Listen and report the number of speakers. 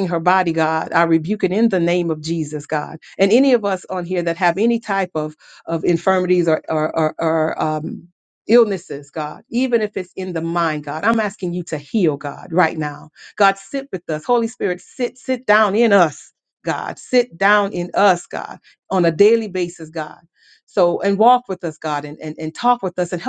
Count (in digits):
1